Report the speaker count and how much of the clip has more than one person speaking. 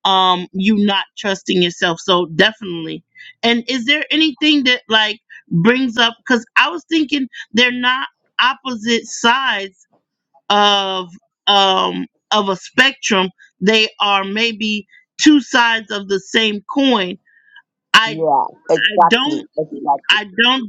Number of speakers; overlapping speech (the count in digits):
2, about 3%